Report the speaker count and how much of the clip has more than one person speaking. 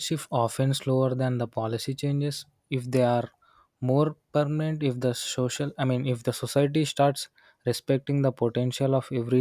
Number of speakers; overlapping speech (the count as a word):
one, no overlap